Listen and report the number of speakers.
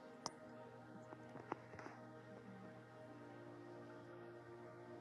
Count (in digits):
0